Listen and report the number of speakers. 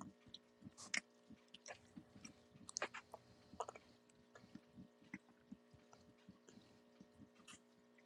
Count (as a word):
zero